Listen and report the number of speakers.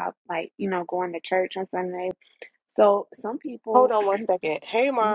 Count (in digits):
2